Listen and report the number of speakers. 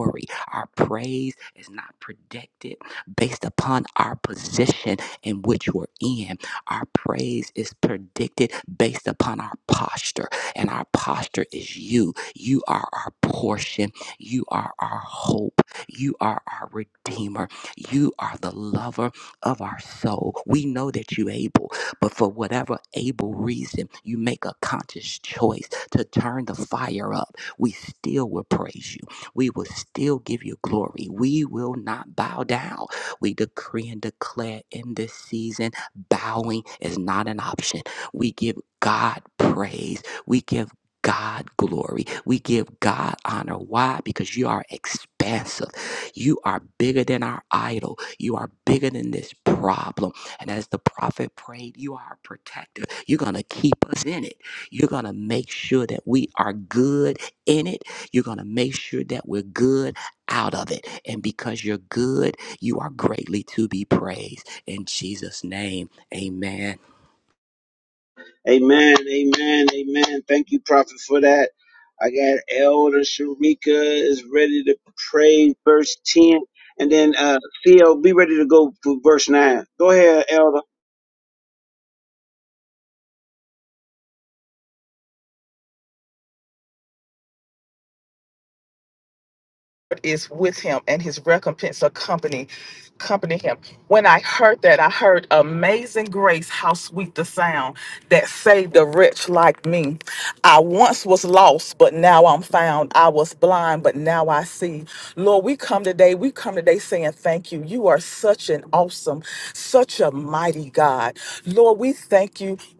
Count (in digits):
3